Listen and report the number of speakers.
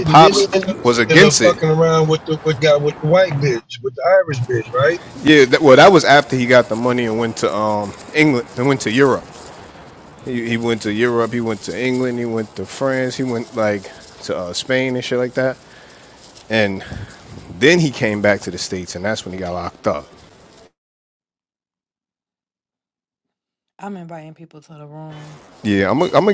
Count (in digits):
3